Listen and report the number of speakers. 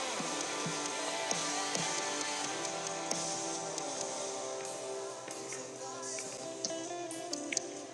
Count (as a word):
zero